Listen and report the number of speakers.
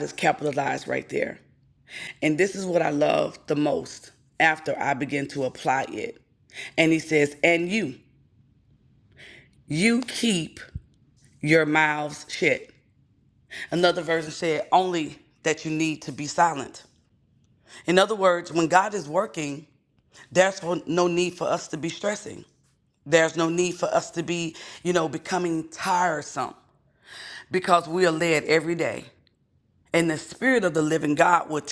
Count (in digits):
1